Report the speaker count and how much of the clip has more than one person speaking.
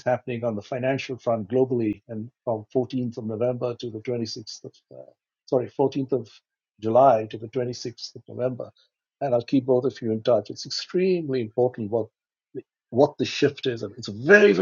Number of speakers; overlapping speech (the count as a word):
one, no overlap